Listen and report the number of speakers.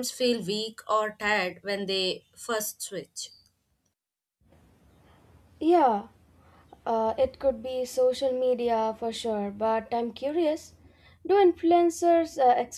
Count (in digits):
2